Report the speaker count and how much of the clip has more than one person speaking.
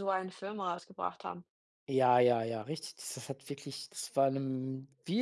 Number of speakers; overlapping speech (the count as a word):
two, no overlap